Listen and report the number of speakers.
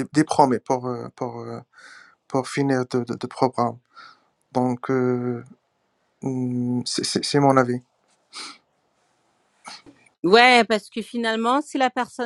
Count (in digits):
2